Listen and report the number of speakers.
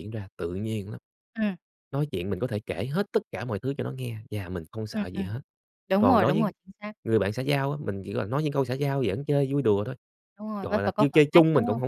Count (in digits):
2